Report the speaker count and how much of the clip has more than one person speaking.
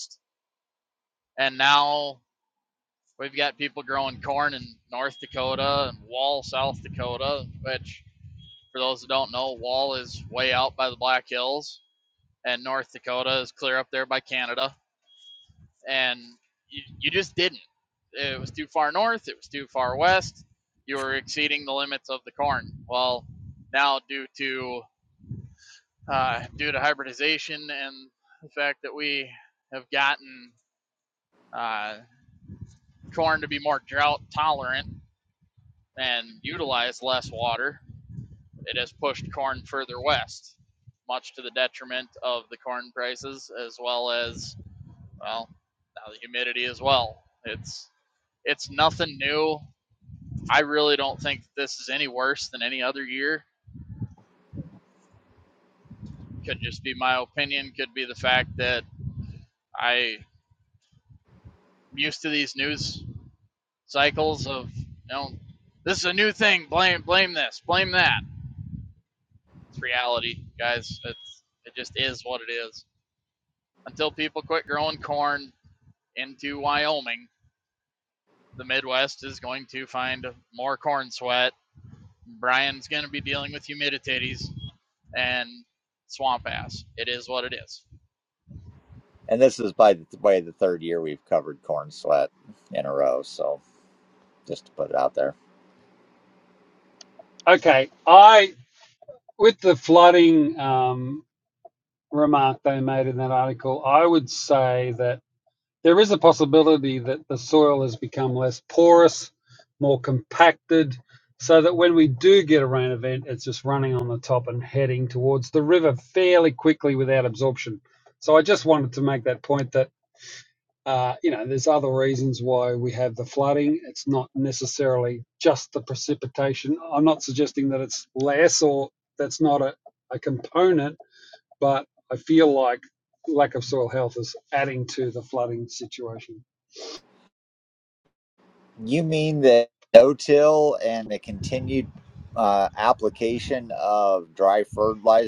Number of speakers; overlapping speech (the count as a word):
three, no overlap